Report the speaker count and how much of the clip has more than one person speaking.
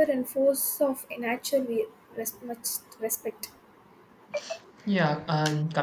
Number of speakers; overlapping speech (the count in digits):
2, no overlap